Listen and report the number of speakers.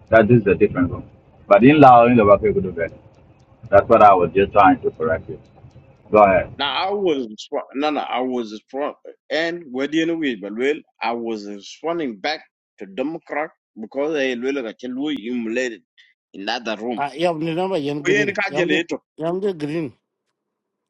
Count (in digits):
3